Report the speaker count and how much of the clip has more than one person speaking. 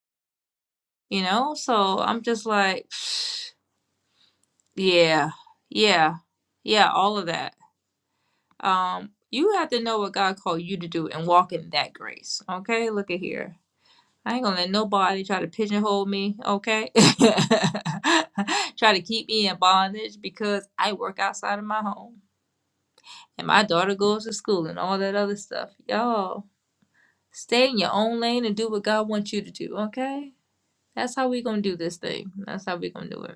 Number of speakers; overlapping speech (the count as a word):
one, no overlap